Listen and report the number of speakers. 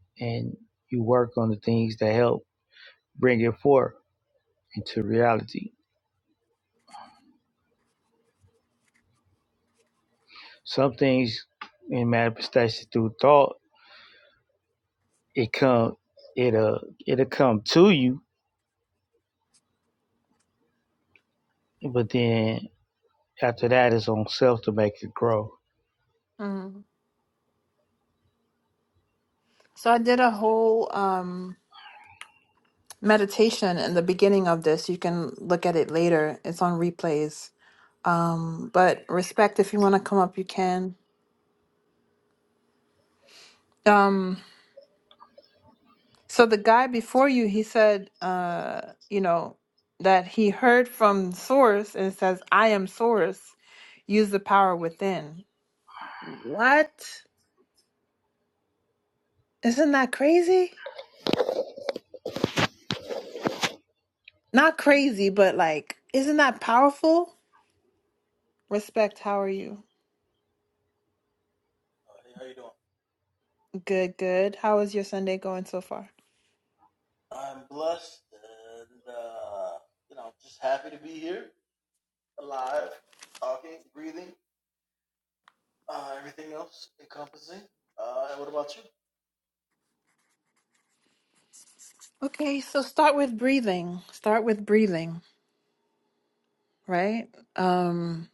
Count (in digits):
3